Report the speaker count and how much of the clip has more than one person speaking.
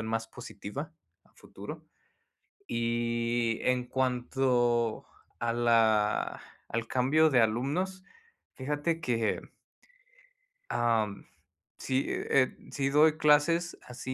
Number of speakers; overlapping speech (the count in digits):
1, no overlap